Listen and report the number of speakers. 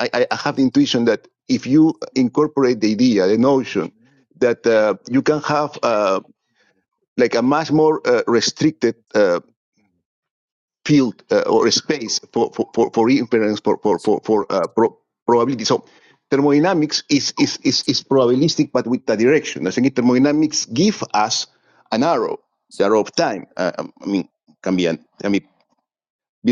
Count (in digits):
1